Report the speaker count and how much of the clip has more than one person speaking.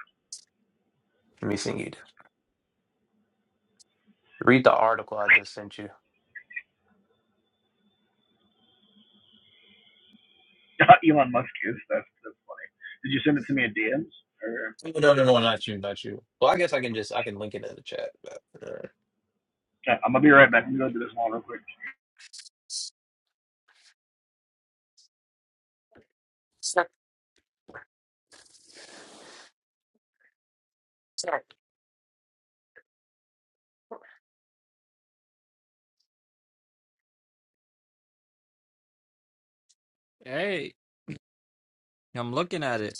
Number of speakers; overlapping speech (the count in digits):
3, no overlap